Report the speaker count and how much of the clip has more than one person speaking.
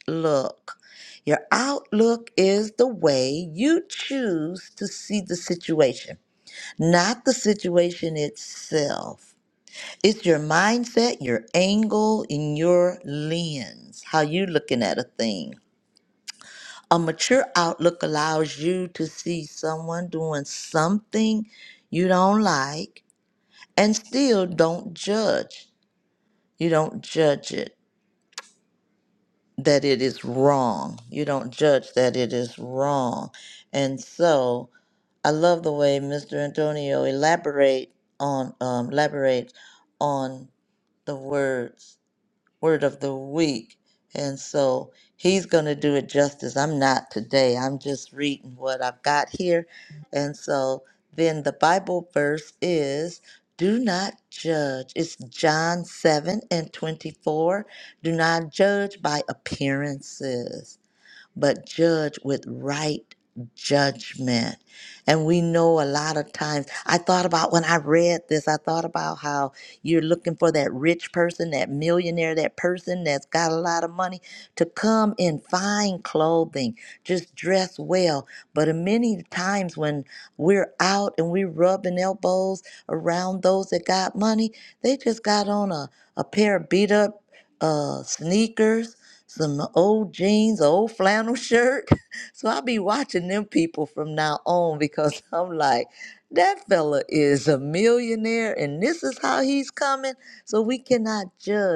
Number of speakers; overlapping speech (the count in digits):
1, no overlap